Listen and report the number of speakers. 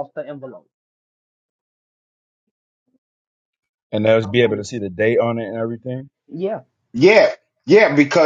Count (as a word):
three